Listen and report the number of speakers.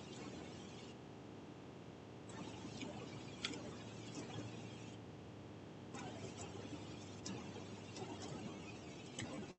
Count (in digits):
0